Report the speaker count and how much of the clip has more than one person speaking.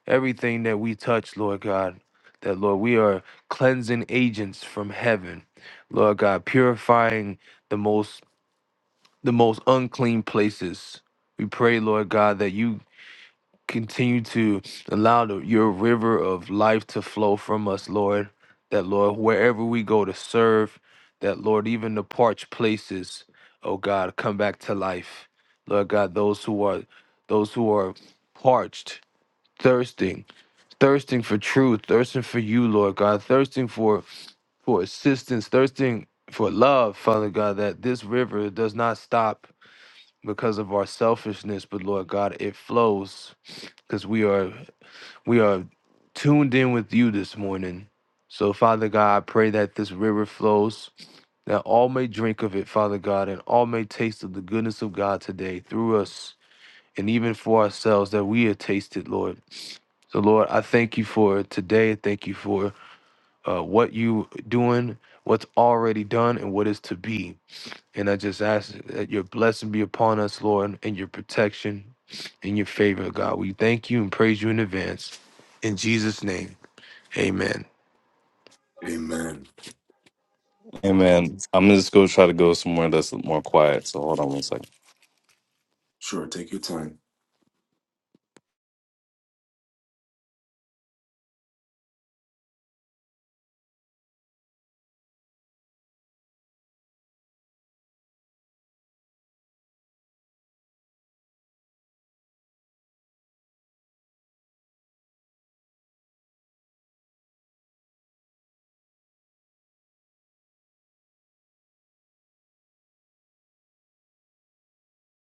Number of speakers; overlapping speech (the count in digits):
3, no overlap